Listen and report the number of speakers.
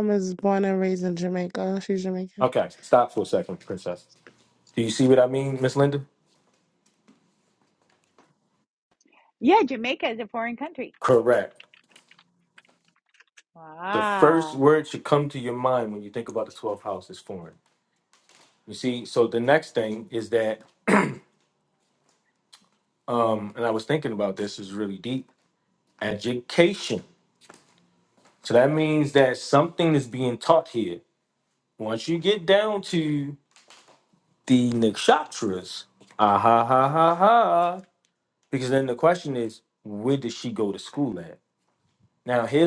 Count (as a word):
three